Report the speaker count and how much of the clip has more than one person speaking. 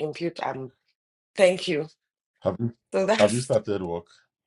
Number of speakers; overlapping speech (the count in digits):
2, about 5%